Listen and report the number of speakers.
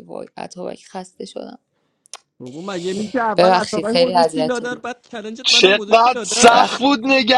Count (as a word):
three